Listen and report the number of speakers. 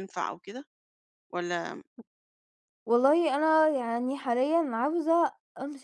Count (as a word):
two